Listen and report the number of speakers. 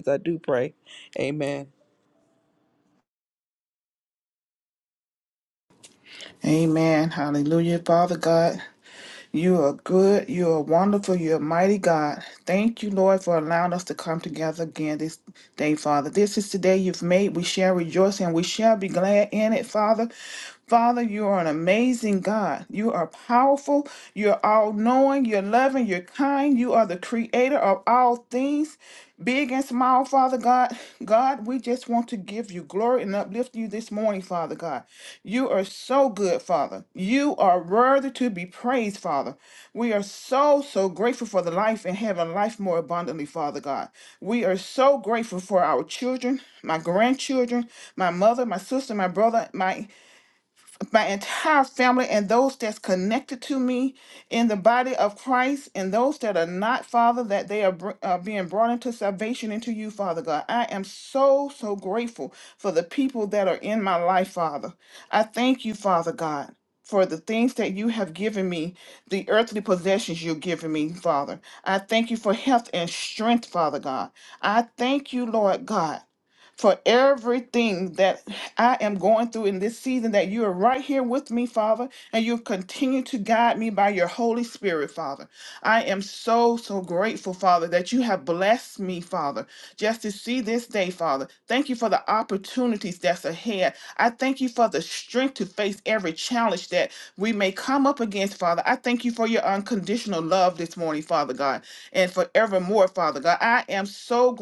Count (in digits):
2